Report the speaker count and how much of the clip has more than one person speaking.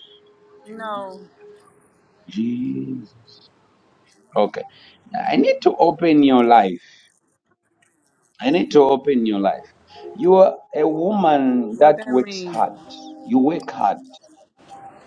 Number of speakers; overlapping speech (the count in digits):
2, about 6%